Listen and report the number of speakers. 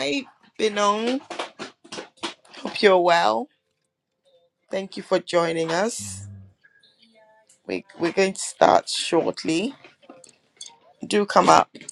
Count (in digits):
1